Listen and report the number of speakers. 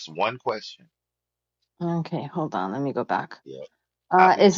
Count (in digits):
2